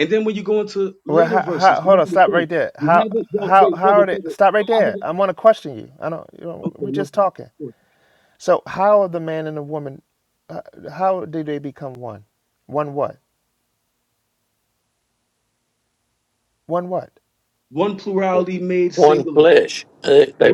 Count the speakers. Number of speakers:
three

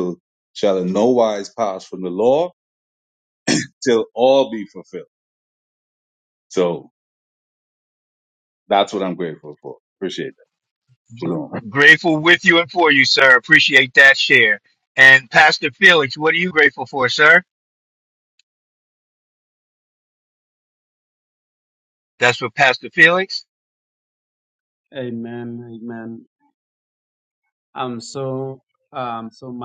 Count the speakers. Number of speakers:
three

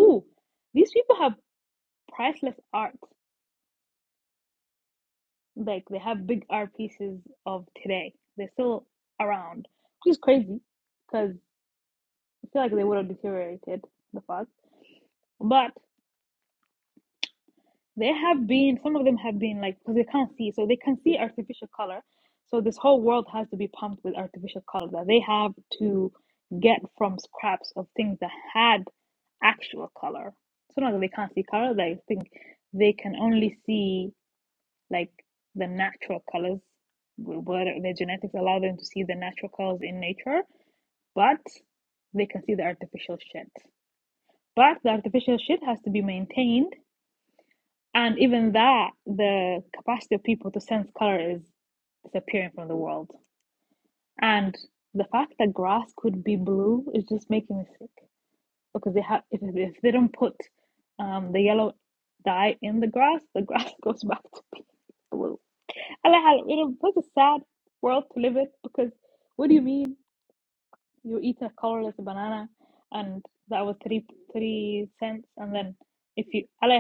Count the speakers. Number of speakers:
one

